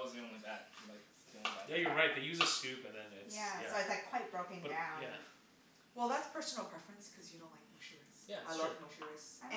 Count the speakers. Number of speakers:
four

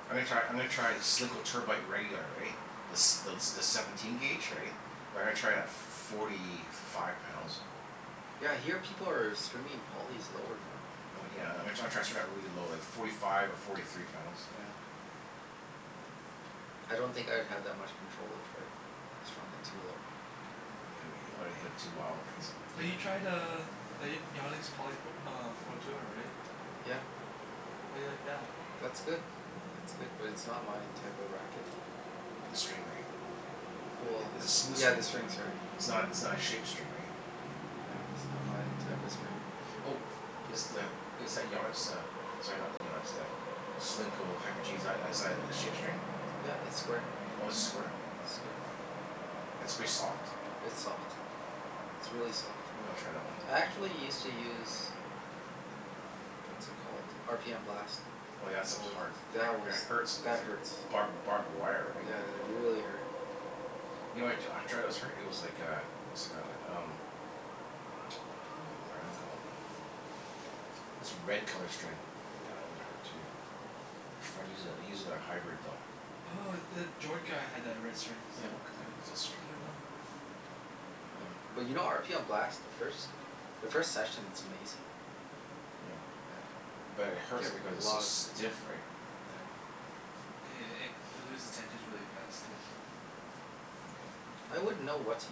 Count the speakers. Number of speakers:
three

